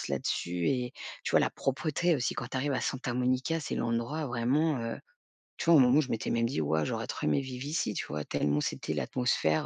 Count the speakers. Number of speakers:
1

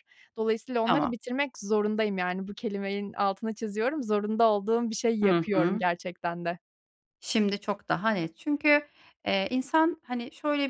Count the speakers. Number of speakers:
2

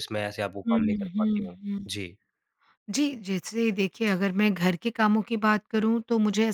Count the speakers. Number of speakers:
2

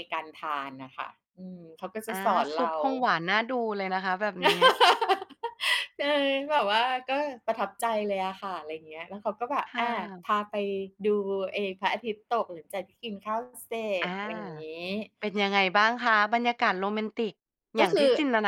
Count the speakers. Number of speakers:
2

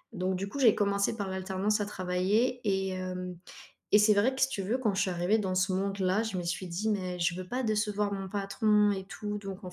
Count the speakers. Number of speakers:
1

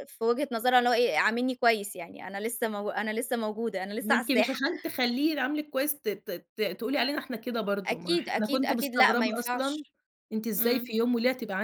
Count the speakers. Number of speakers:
2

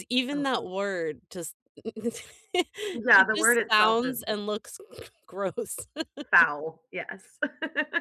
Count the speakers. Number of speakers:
2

